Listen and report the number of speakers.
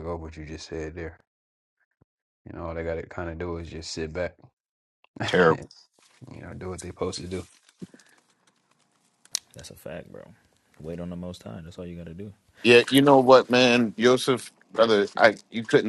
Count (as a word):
three